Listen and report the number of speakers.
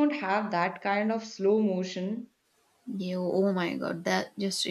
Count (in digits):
2